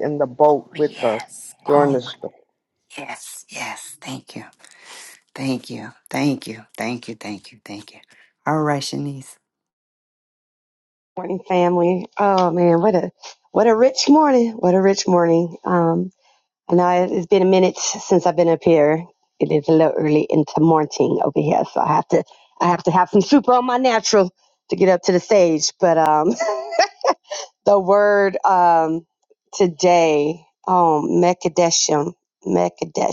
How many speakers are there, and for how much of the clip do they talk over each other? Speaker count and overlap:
3, about 3%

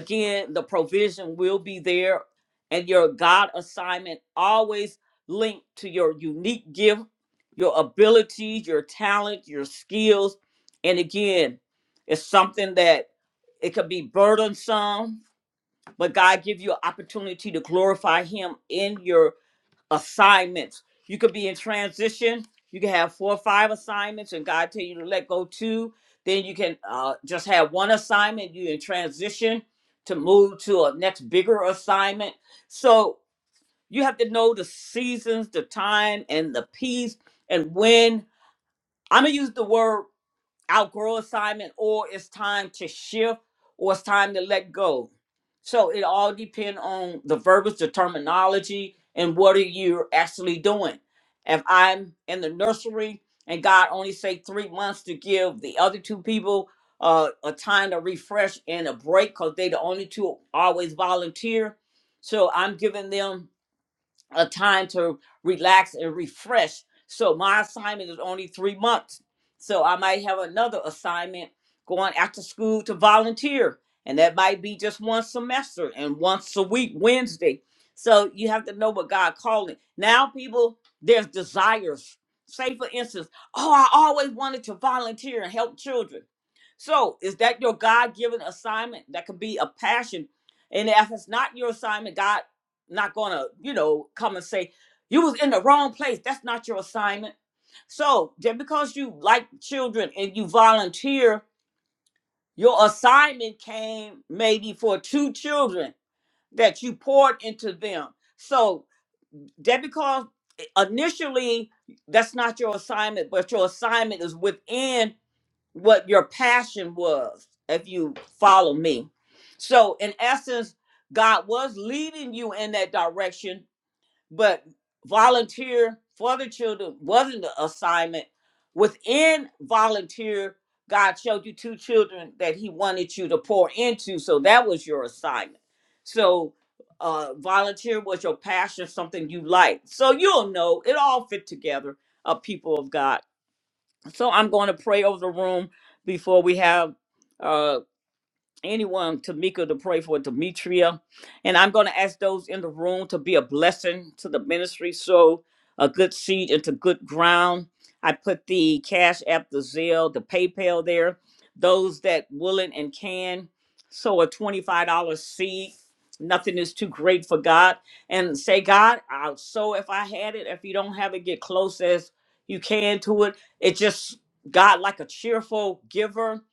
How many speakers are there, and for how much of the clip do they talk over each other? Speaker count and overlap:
1, no overlap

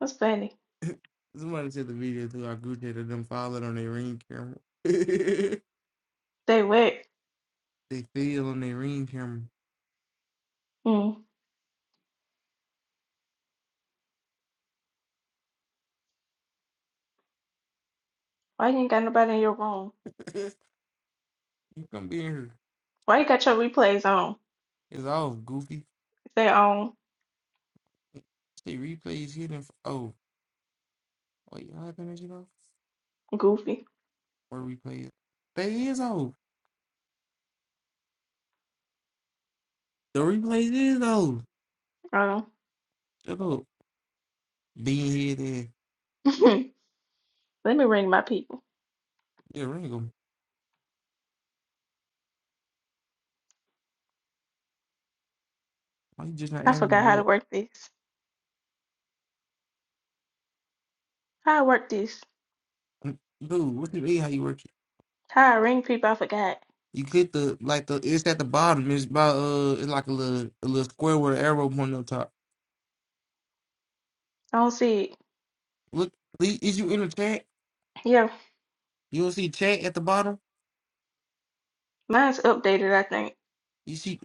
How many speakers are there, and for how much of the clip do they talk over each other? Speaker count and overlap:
2, about 1%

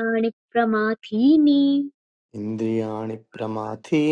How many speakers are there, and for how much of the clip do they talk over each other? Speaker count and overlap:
2, no overlap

